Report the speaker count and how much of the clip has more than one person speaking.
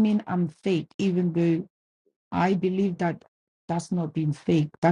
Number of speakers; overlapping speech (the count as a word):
one, no overlap